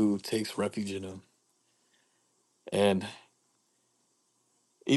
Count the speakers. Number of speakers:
1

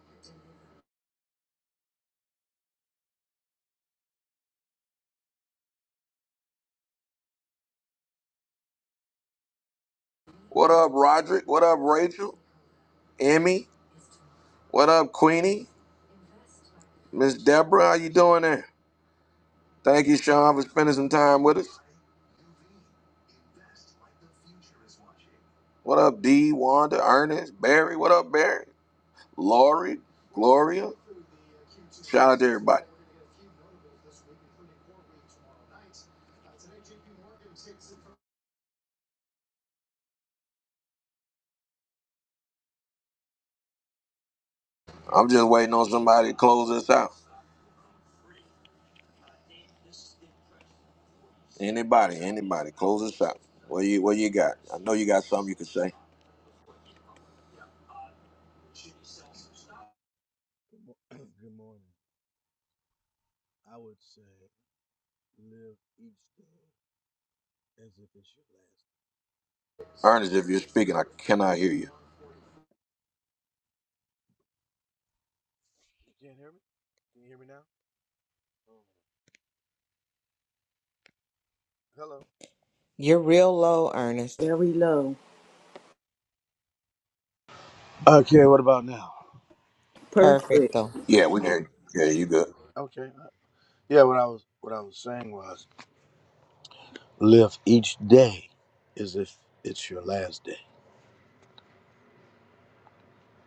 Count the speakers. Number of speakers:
4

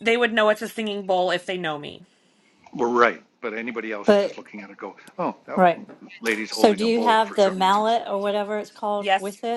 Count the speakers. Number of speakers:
3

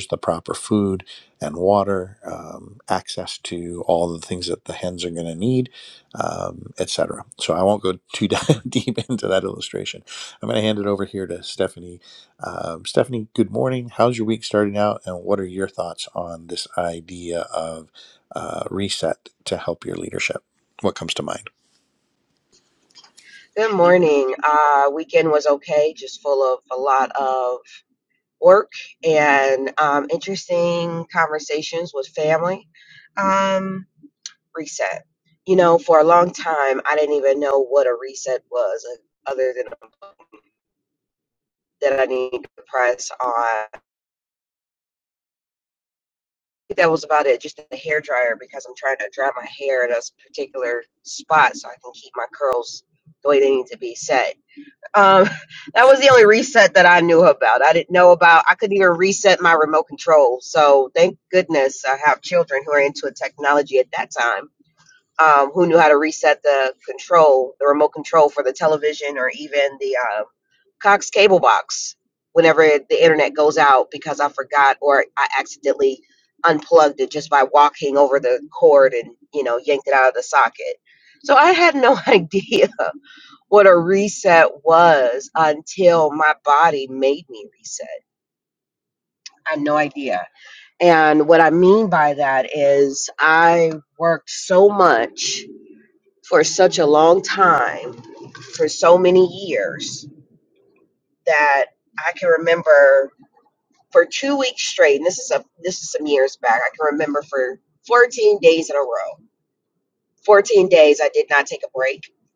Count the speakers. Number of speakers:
2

